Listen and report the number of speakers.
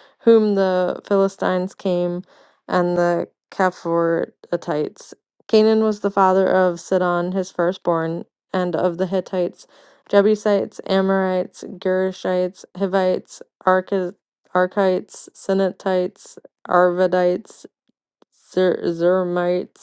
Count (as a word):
one